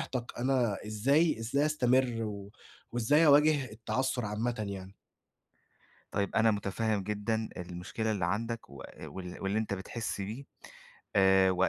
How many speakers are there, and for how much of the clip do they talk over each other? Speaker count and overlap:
2, no overlap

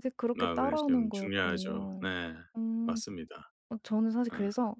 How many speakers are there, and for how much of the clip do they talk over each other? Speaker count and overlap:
2, about 41%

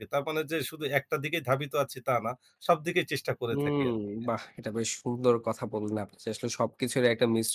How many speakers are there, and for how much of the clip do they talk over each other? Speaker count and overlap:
2, about 6%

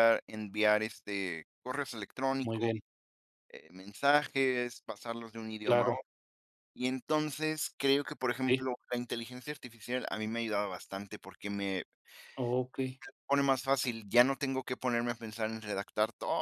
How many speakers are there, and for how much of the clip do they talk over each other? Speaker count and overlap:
2, about 5%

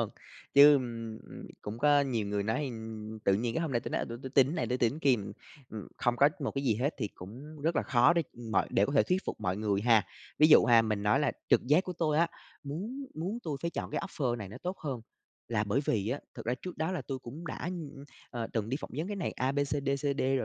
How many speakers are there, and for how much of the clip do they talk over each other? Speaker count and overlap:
1, no overlap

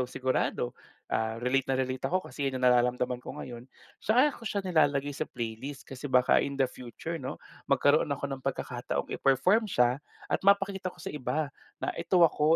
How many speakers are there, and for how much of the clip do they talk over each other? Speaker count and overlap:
1, no overlap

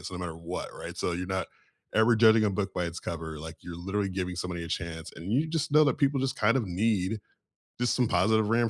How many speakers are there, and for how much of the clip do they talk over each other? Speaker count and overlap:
1, no overlap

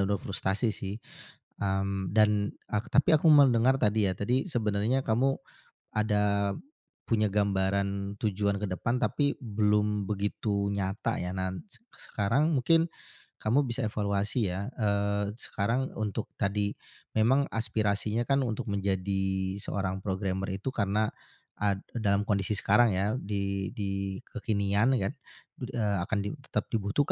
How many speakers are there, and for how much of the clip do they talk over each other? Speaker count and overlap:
1, no overlap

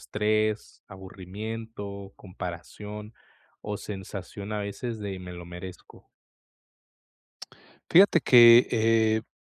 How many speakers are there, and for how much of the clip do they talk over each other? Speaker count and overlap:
2, no overlap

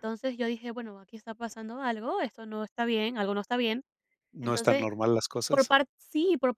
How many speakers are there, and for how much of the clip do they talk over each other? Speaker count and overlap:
2, about 9%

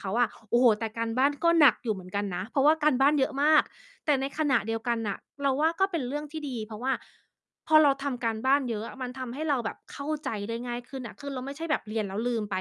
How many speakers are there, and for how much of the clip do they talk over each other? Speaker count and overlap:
1, no overlap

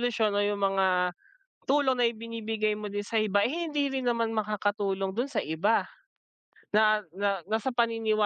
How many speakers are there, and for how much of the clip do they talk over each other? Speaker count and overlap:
1, no overlap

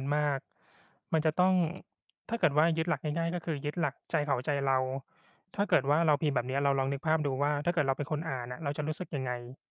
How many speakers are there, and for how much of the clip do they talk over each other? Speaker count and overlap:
1, no overlap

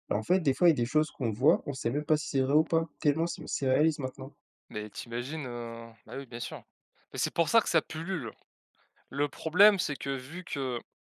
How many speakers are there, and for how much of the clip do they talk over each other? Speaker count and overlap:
2, no overlap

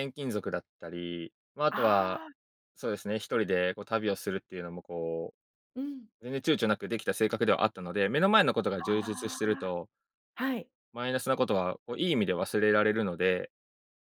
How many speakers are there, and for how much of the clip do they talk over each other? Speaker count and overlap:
2, about 7%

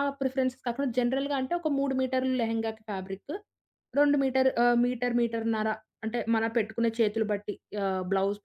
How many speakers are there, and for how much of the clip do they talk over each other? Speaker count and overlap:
1, no overlap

